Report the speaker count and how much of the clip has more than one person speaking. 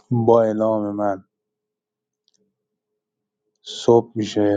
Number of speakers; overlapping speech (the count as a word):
one, no overlap